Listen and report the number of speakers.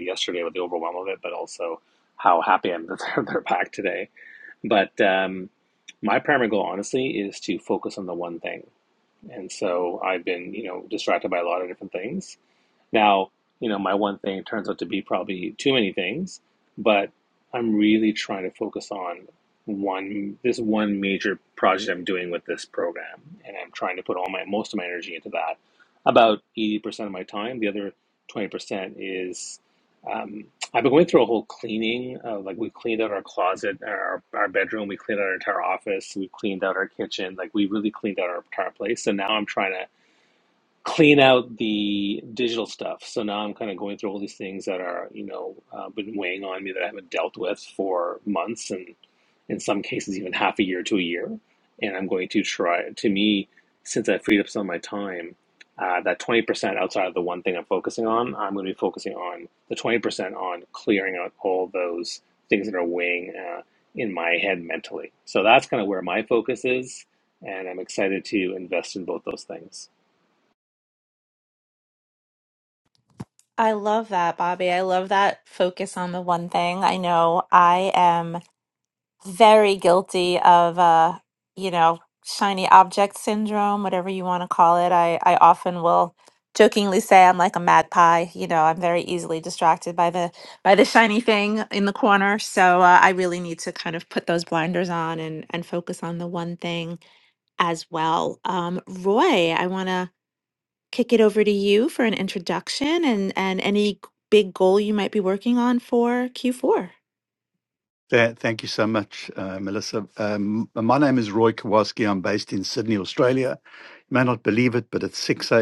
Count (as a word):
three